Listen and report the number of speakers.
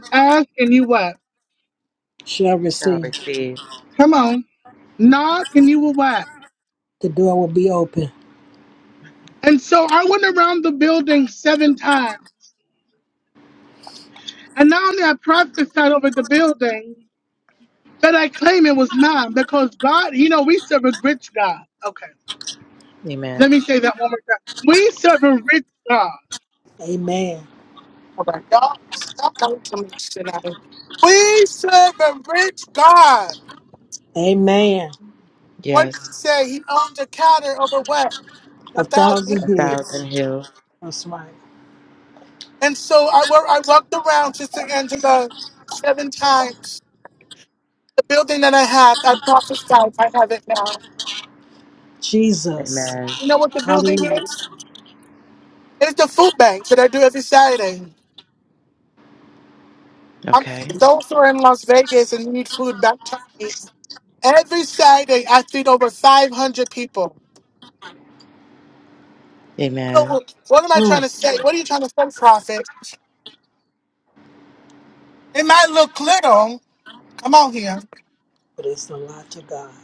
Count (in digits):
3